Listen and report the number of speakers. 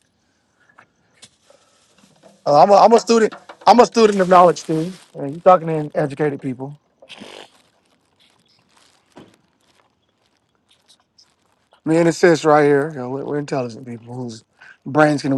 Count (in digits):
1